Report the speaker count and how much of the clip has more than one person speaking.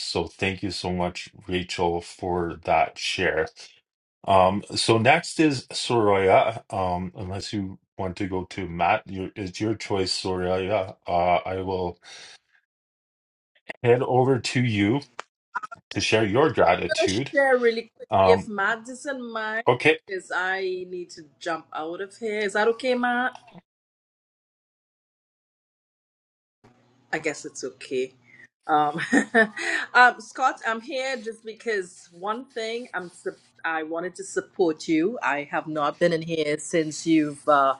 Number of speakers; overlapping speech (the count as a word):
two, about 1%